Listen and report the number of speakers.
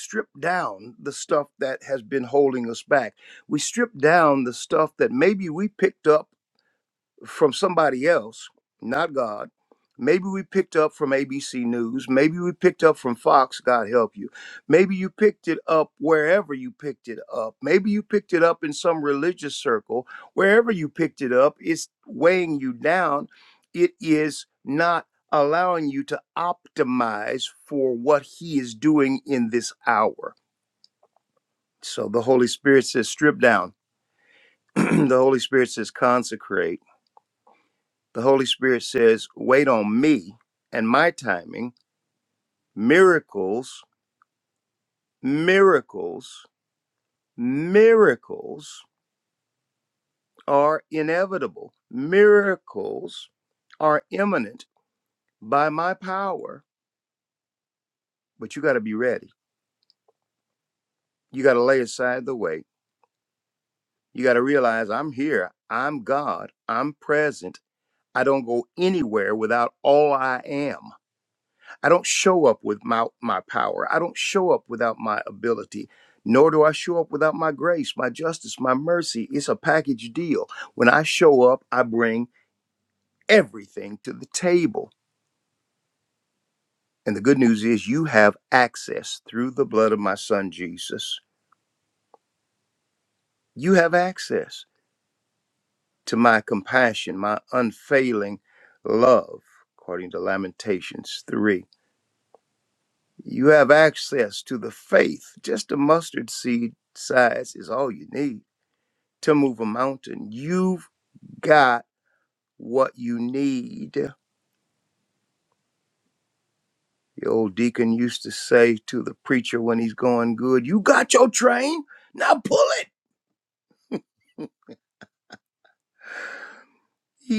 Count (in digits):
1